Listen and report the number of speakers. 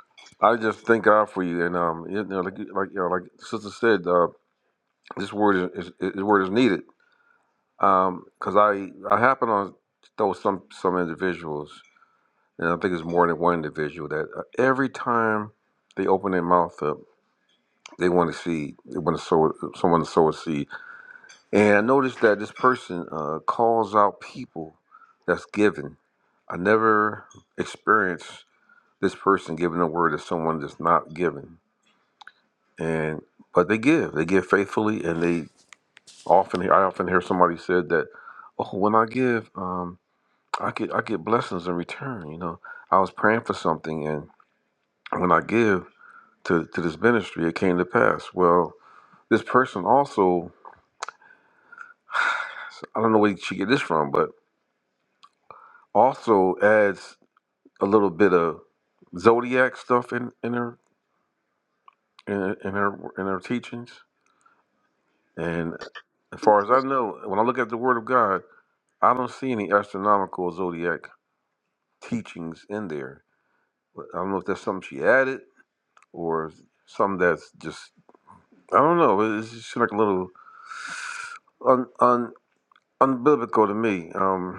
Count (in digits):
1